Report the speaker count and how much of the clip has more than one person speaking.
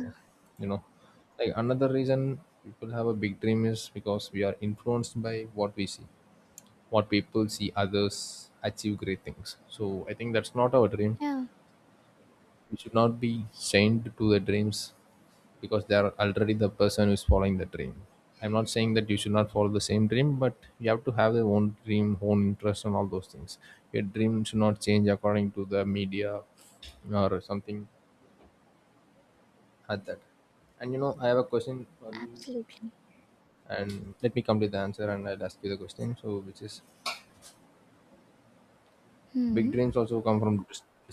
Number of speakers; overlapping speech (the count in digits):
2, about 1%